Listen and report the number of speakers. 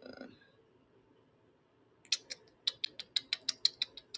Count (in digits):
0